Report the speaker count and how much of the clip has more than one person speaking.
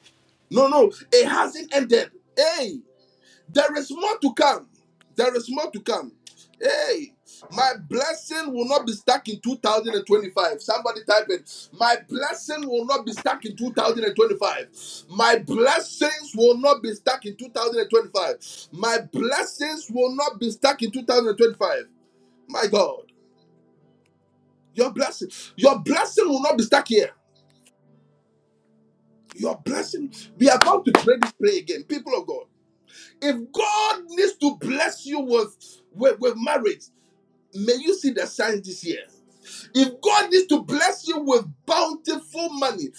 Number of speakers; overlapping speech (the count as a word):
one, no overlap